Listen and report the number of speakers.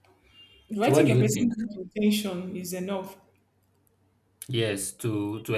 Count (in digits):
2